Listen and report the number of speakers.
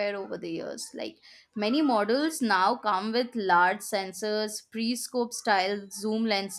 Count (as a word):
one